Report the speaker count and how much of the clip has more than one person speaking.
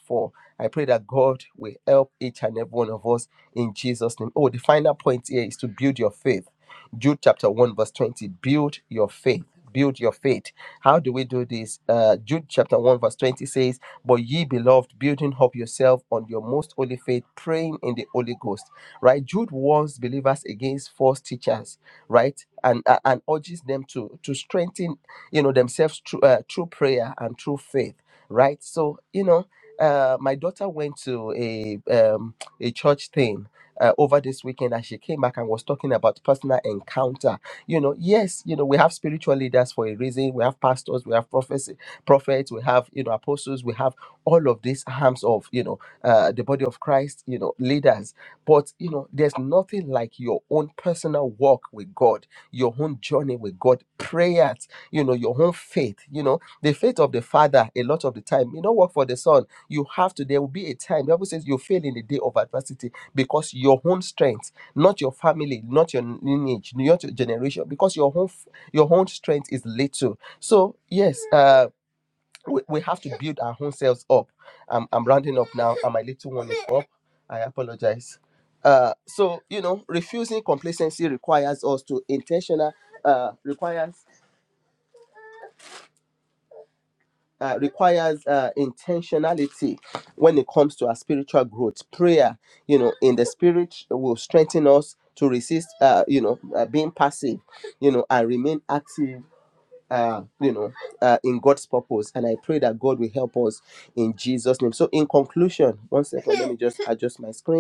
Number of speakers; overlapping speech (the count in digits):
1, no overlap